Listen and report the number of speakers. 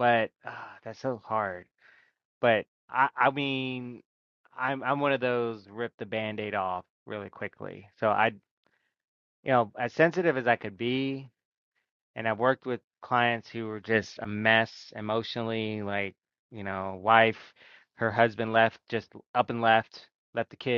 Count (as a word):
one